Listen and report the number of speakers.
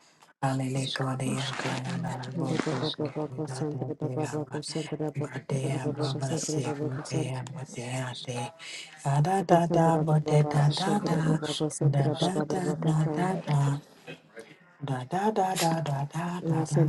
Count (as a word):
three